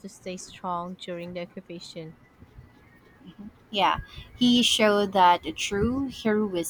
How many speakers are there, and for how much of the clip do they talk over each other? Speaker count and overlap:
2, no overlap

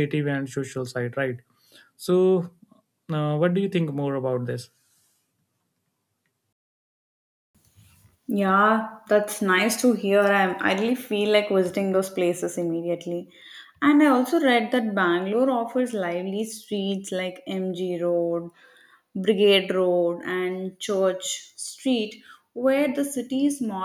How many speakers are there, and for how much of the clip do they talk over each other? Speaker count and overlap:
2, no overlap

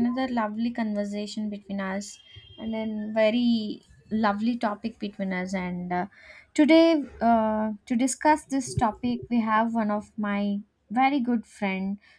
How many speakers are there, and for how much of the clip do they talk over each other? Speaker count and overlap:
1, no overlap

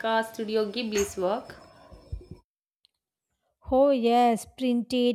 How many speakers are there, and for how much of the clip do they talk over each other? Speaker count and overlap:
2, no overlap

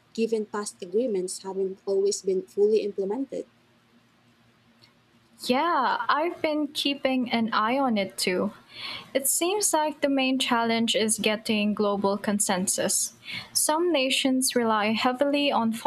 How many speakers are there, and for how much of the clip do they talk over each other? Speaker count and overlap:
2, no overlap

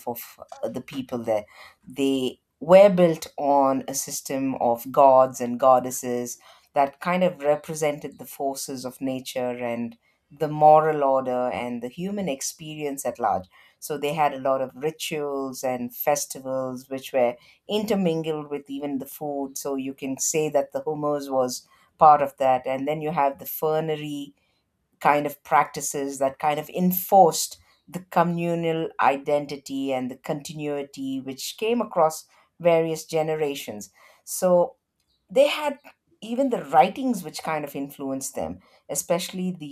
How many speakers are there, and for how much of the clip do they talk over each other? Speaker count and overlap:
1, no overlap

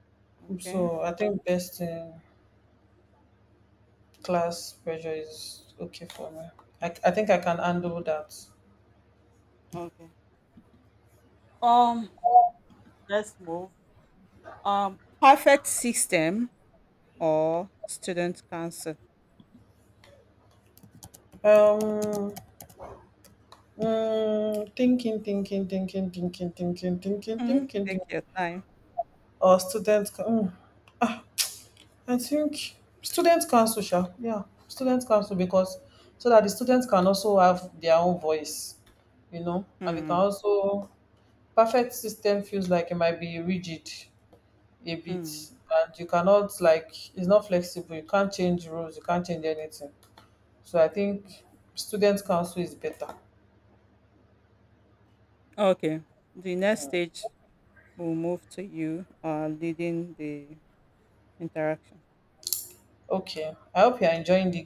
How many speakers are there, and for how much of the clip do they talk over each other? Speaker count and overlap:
2, about 2%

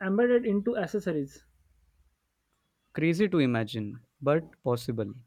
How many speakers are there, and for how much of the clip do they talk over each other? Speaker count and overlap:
2, no overlap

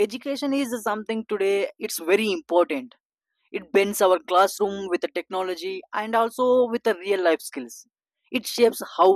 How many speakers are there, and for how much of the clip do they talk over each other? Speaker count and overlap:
1, no overlap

